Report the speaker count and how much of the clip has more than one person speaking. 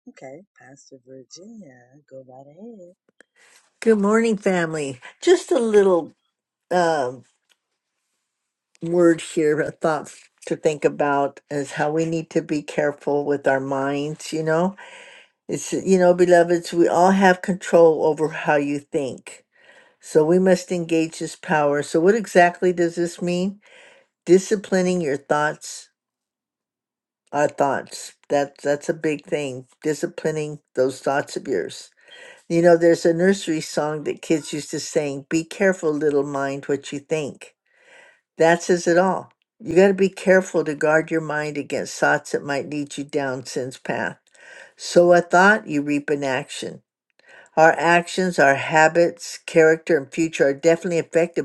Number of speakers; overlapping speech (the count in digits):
2, no overlap